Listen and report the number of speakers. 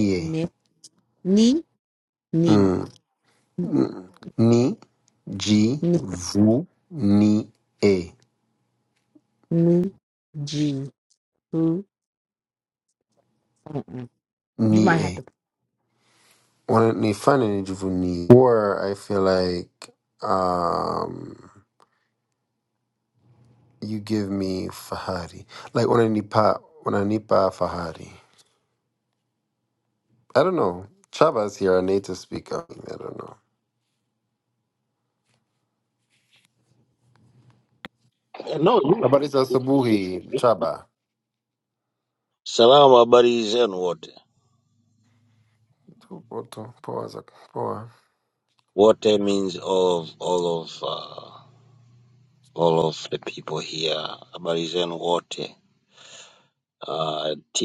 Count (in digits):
3